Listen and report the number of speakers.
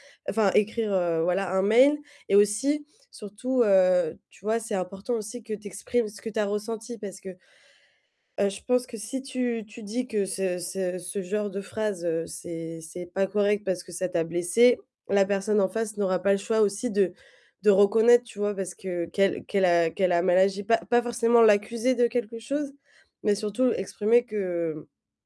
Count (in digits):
1